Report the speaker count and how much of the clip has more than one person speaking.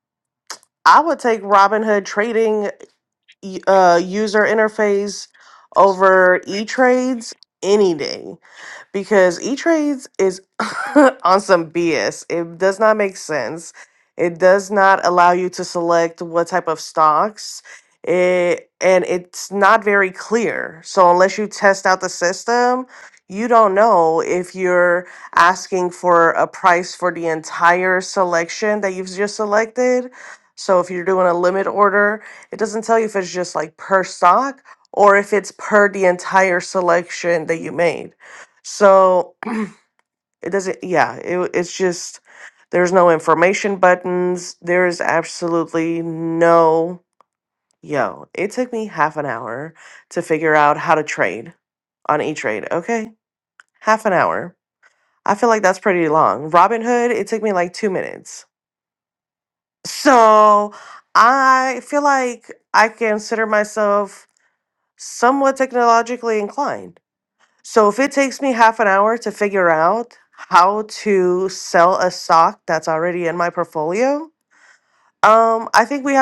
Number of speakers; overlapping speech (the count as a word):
one, no overlap